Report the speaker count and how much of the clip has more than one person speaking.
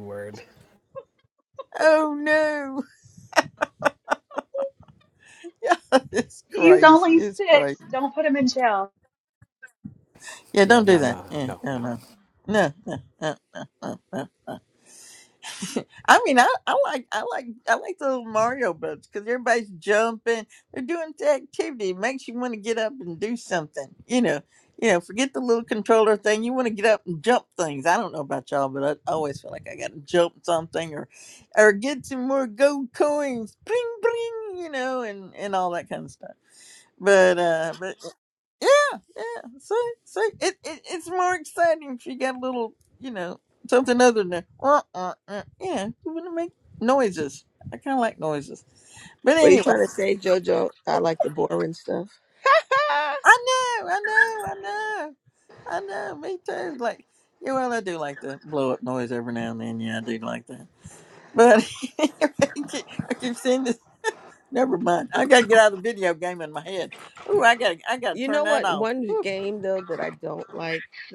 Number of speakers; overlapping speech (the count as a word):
four, about 5%